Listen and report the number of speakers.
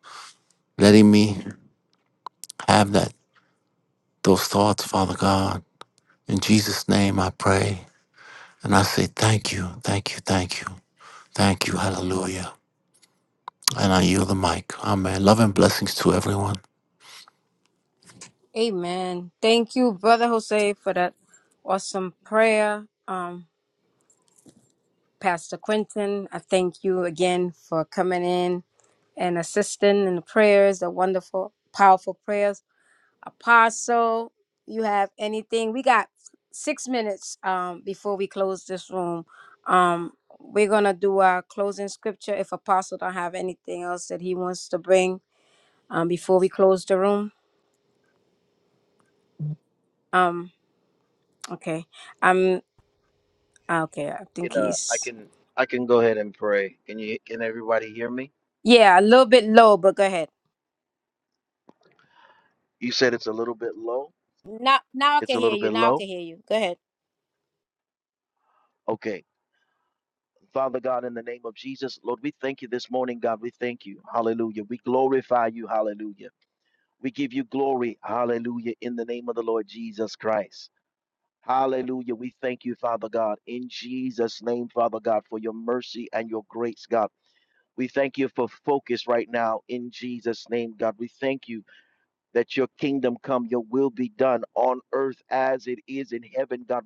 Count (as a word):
three